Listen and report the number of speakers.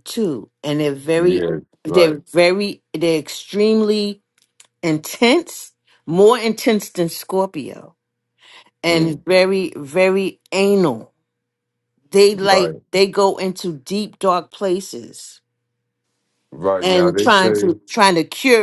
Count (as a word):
two